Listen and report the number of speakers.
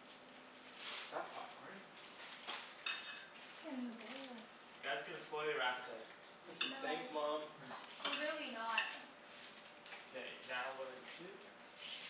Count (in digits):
3